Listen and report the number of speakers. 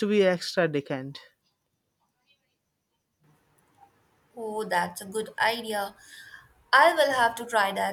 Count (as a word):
two